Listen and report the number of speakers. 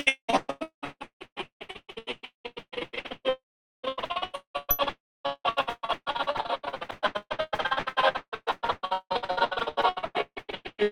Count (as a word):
zero